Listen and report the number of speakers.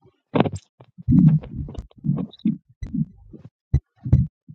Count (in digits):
0